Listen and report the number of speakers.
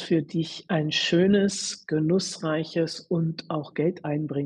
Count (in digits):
1